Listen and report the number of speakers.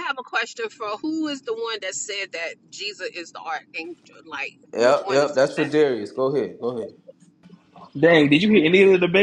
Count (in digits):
3